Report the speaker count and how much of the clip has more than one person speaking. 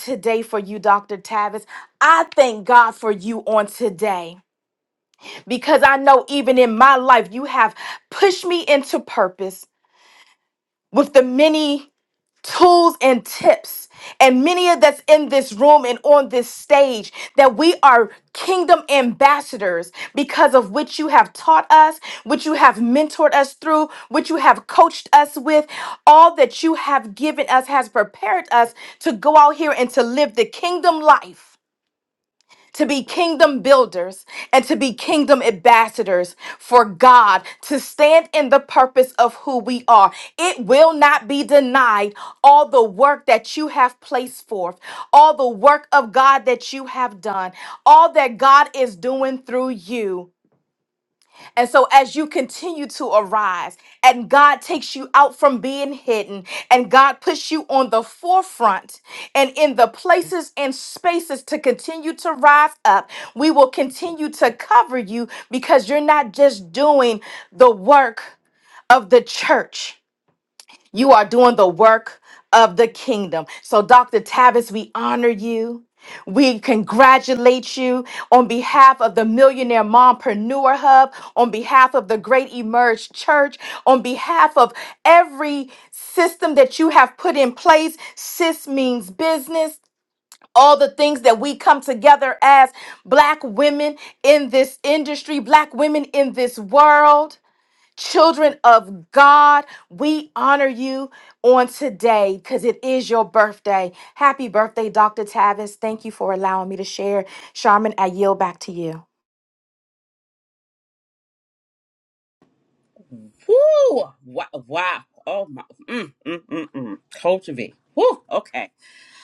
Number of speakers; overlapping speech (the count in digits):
2, no overlap